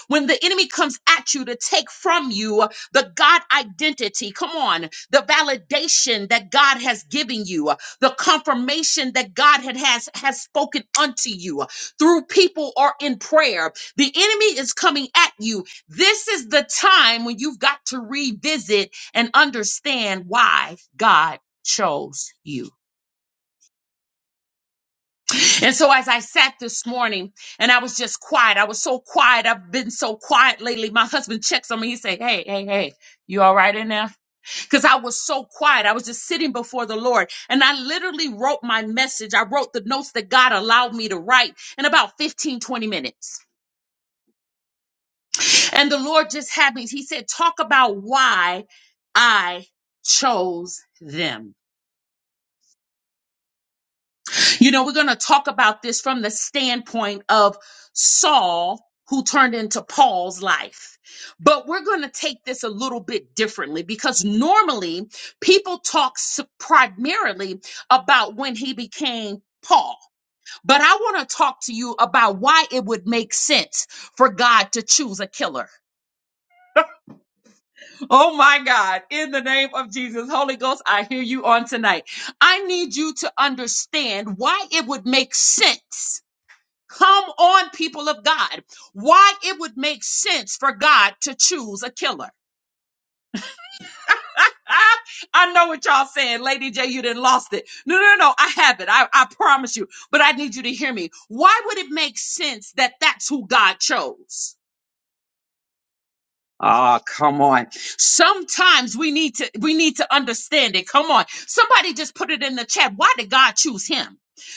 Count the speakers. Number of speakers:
one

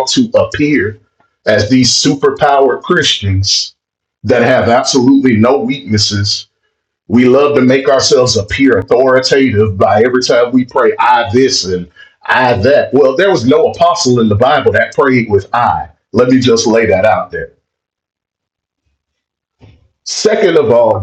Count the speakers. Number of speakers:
one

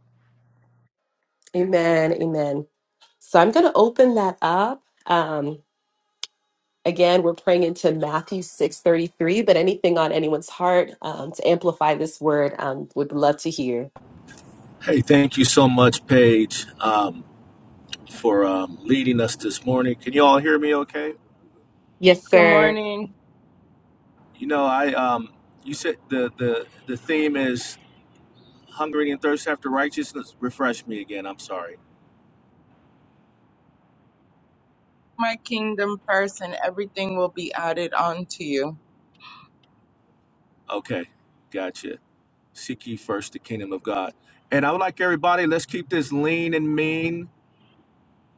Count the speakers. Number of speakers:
three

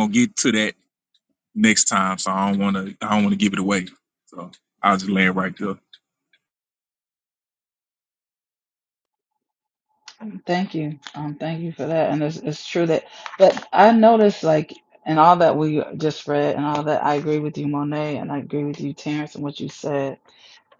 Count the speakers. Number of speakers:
two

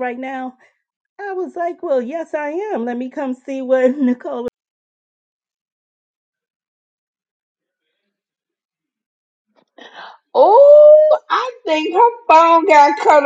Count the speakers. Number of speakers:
two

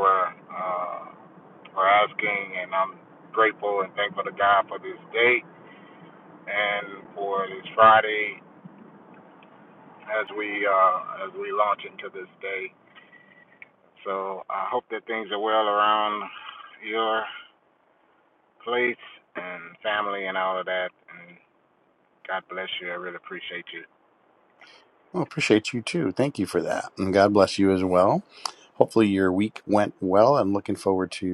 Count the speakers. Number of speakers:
two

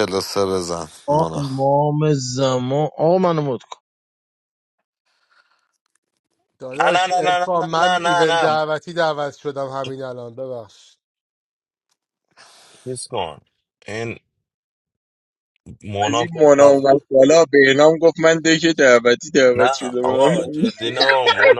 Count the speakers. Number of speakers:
five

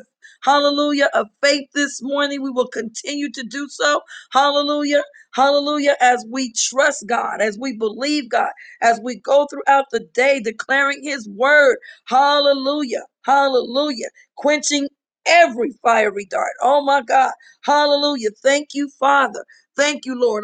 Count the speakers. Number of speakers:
one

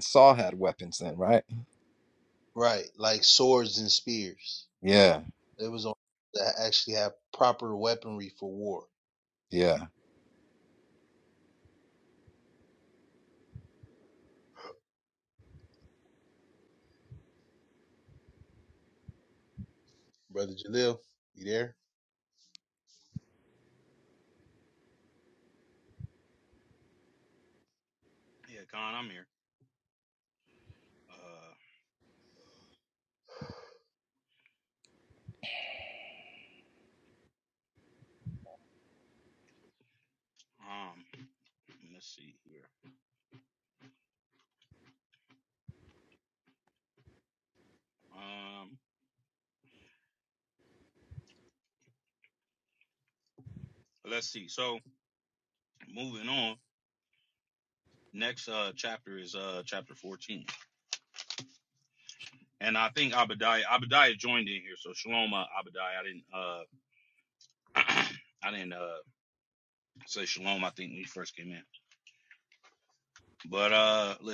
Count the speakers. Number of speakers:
three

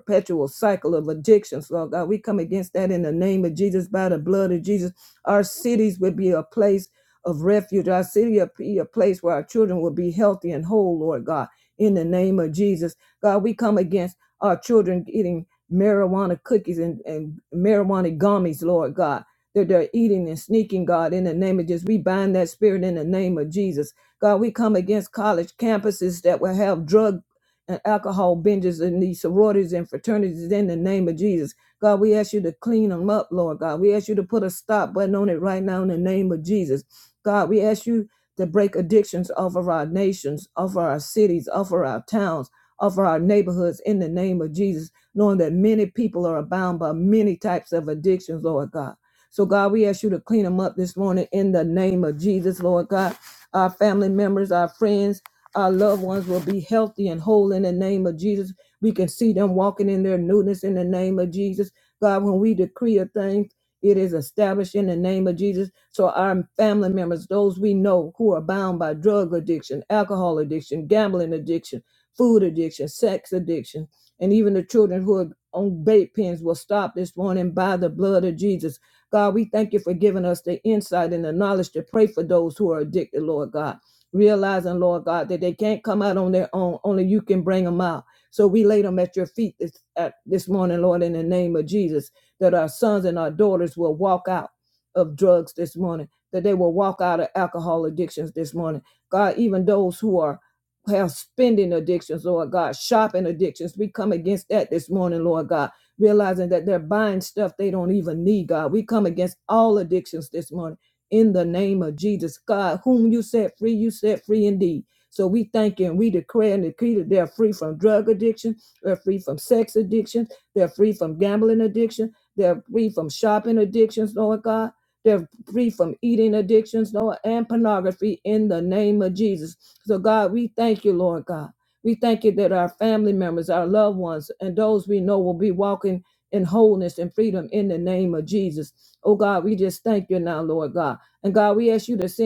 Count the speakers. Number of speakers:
one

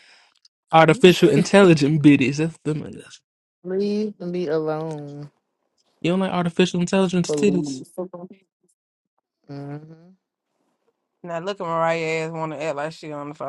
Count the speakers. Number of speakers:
three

